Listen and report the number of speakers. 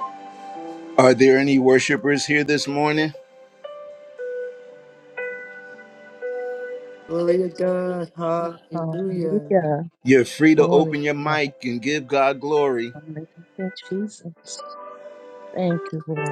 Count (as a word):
three